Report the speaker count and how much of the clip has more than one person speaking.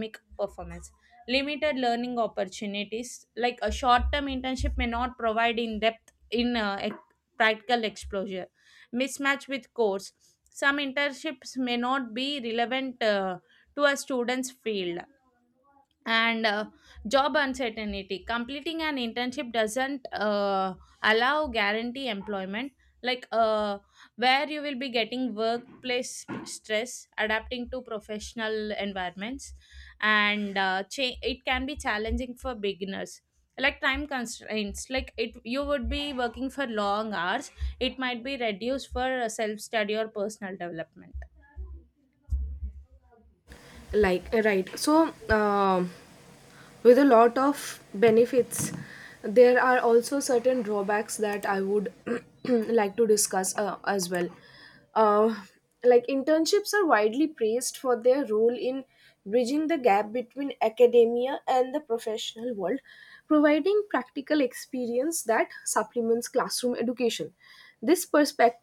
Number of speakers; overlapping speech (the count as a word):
two, no overlap